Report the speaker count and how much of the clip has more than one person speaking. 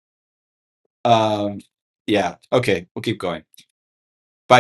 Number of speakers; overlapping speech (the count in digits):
1, no overlap